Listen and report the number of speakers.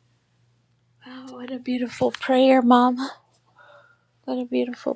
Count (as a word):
one